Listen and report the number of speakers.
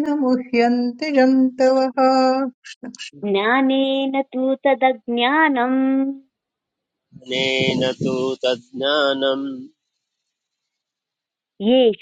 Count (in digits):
3